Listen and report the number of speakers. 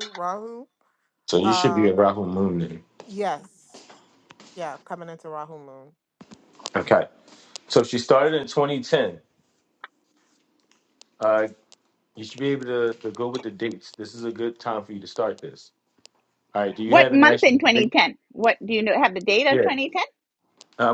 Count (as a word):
three